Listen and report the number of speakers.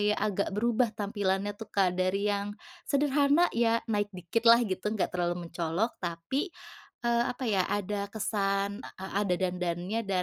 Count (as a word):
one